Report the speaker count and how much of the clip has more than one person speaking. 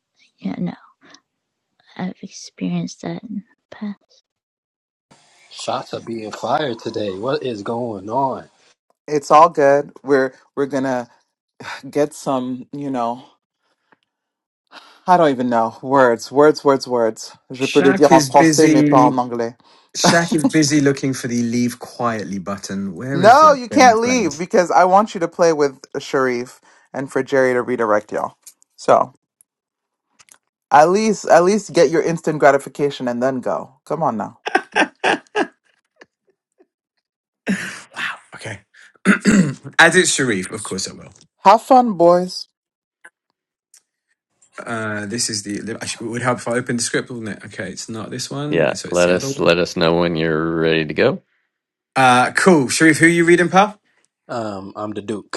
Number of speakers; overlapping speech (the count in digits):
5, about 7%